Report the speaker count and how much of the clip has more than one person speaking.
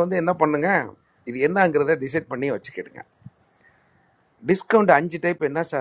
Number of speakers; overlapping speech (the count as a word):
one, no overlap